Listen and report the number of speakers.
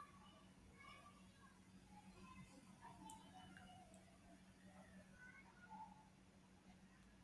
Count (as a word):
zero